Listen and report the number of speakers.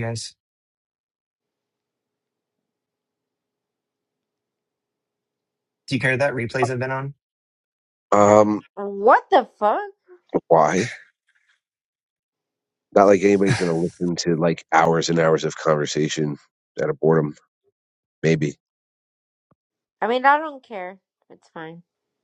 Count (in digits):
3